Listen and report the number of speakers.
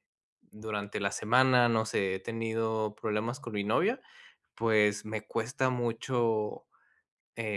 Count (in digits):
1